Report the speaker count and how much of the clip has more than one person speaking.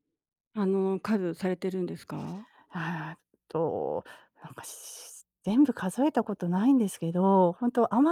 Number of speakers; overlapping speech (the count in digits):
2, no overlap